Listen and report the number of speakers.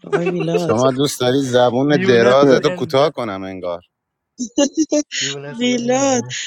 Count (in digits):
3